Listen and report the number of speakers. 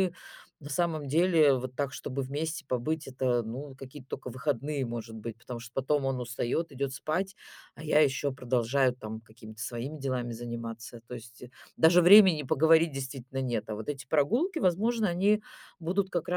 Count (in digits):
1